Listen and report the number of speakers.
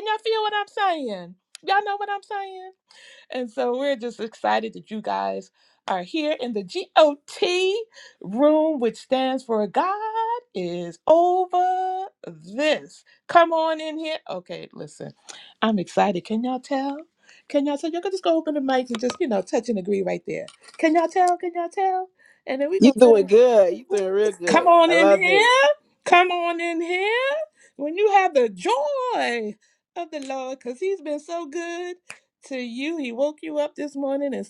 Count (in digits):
2